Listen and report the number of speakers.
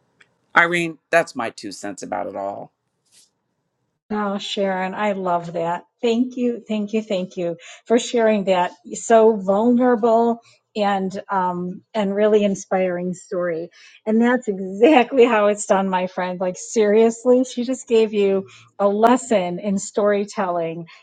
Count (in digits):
2